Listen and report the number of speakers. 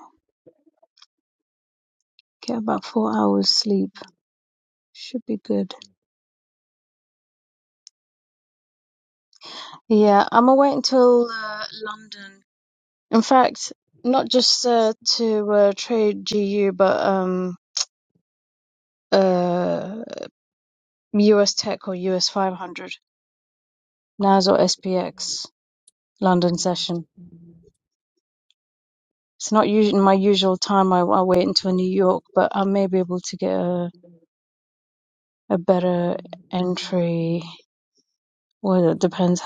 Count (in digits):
1